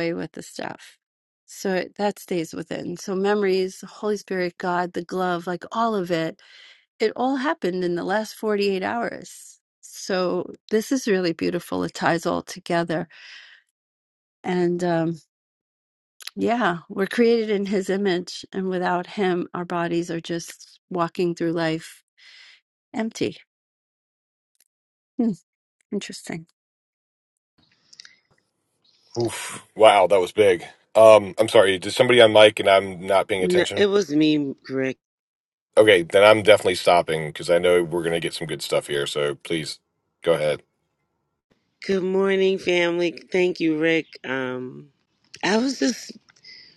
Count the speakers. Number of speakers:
three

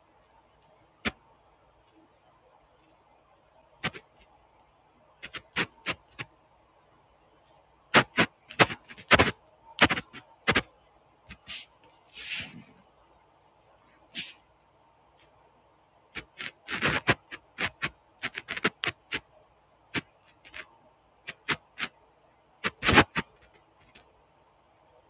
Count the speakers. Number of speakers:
zero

